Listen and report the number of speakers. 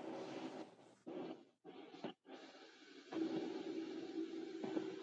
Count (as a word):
zero